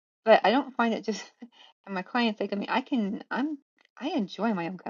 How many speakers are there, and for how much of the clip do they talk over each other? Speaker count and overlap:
one, no overlap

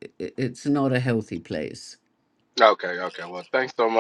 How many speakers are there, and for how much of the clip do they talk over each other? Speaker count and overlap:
two, no overlap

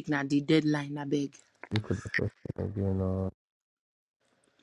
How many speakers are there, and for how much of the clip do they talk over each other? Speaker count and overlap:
two, no overlap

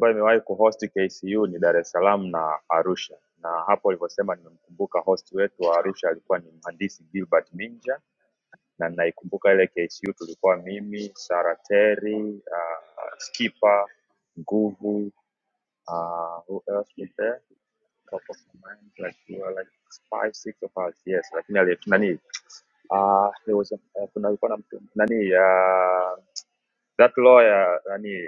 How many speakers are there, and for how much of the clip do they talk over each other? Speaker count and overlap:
one, no overlap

